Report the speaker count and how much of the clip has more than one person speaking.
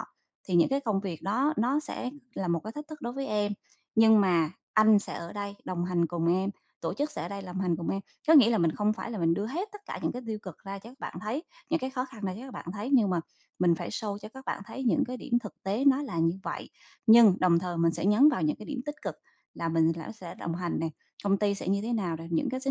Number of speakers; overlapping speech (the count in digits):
1, no overlap